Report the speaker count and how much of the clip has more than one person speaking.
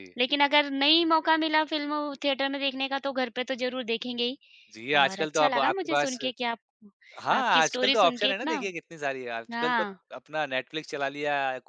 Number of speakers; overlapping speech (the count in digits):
2, about 26%